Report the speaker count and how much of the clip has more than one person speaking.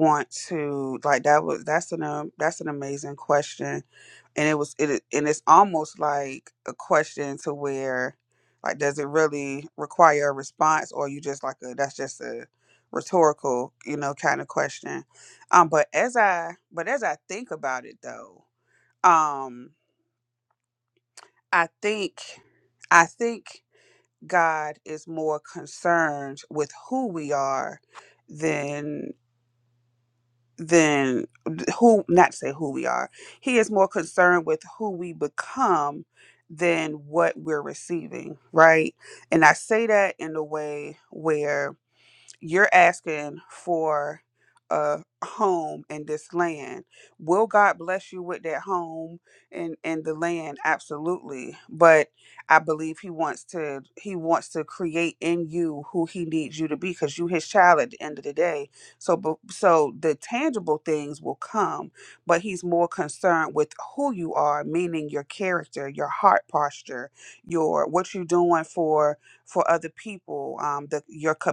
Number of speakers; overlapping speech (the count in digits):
1, no overlap